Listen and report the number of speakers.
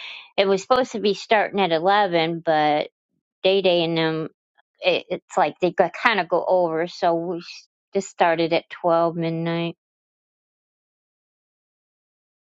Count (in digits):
1